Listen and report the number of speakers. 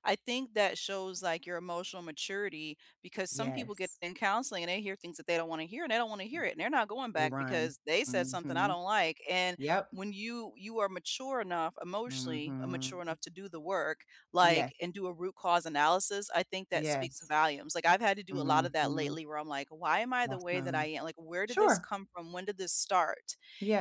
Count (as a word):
two